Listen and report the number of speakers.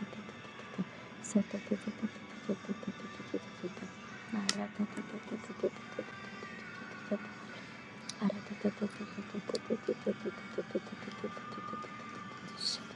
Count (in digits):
0